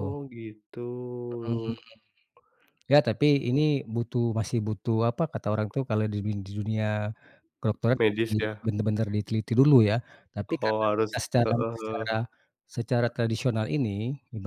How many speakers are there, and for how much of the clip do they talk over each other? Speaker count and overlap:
two, about 16%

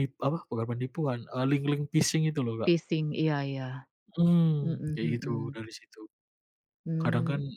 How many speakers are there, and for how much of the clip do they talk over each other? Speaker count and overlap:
two, about 17%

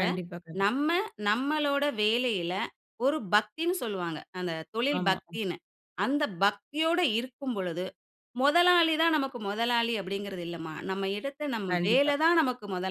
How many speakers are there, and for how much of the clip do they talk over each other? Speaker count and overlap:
two, about 7%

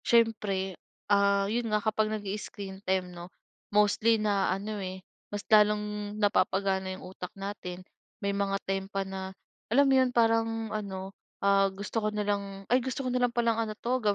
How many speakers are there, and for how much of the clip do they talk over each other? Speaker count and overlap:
one, no overlap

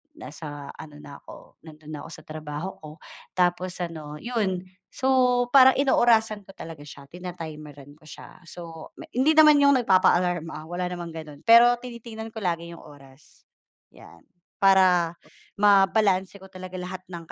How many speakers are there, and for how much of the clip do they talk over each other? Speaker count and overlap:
one, no overlap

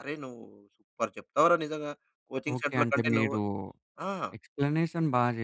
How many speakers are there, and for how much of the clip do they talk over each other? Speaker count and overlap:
two, about 17%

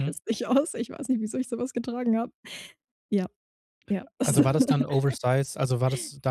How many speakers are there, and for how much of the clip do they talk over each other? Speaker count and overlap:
two, about 2%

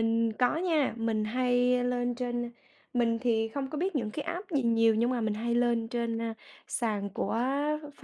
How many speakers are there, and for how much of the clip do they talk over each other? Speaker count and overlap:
one, no overlap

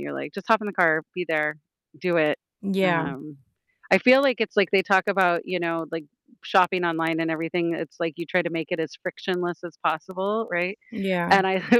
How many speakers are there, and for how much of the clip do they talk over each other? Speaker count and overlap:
two, about 4%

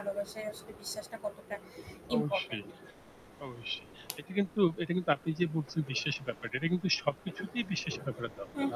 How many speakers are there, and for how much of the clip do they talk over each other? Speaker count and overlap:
two, about 8%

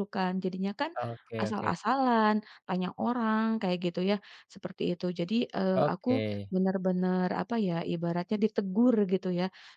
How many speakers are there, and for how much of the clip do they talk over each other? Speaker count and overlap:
two, about 8%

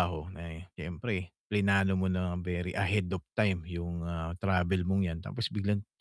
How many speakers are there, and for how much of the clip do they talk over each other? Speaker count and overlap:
one, no overlap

